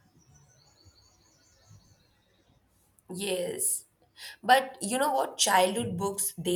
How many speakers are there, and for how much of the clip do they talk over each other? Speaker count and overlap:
one, no overlap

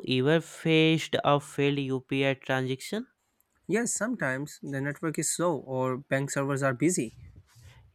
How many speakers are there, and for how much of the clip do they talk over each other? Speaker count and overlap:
two, no overlap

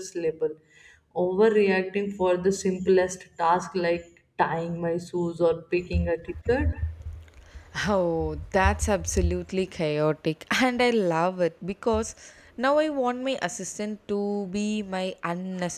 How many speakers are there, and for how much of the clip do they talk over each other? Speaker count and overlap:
two, no overlap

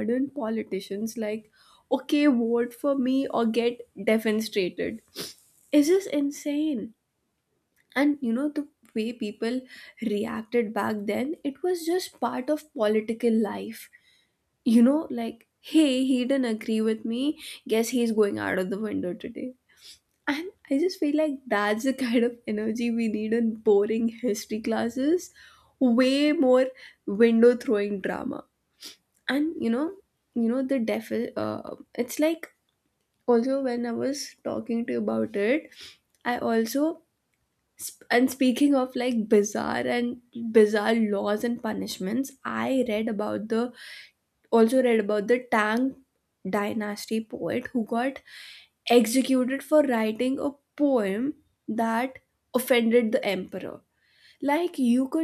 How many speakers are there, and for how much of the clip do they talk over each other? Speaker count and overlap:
one, no overlap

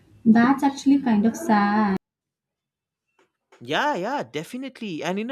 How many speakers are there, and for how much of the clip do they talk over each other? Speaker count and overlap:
two, no overlap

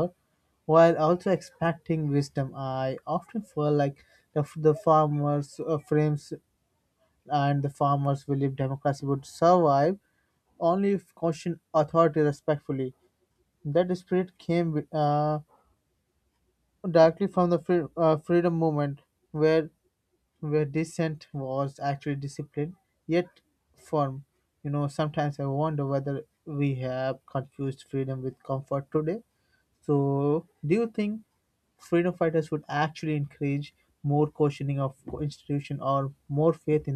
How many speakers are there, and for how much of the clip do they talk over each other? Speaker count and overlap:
one, no overlap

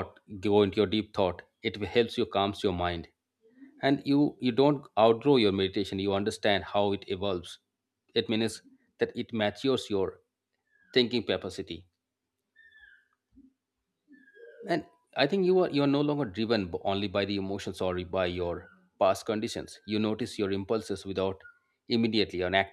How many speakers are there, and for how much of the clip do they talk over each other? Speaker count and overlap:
one, no overlap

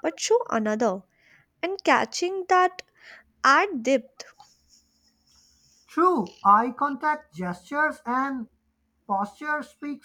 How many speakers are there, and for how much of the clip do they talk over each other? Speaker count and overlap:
two, no overlap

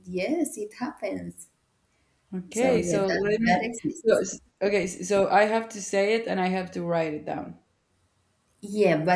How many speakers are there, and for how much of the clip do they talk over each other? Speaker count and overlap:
two, about 11%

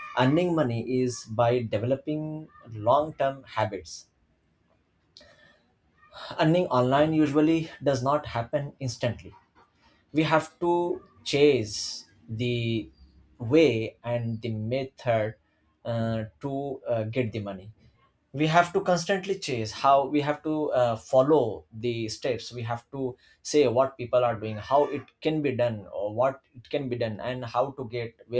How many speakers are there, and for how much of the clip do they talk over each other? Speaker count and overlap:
one, no overlap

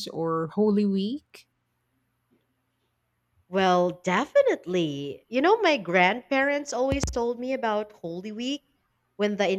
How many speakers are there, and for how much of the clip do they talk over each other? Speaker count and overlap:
two, no overlap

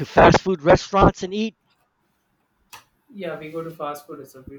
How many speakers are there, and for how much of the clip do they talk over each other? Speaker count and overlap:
two, no overlap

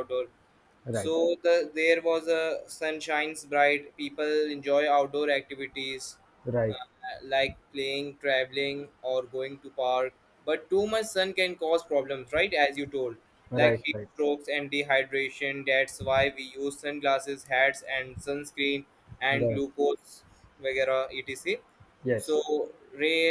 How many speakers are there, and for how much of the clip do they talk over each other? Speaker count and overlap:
two, about 4%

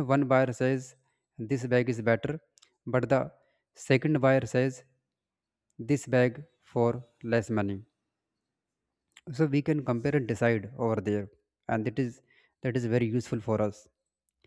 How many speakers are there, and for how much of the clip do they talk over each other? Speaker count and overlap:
one, no overlap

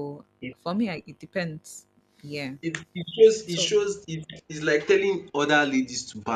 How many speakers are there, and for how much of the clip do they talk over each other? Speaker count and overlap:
two, about 3%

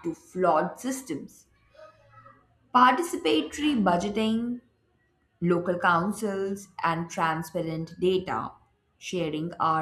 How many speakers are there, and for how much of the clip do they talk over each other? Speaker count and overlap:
one, no overlap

